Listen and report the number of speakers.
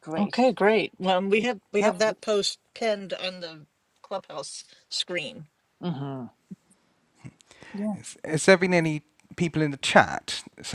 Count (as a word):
three